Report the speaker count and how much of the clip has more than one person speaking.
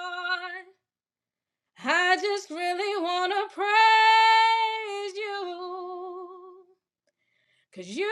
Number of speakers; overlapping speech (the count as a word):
one, no overlap